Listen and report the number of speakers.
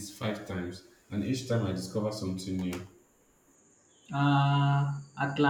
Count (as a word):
two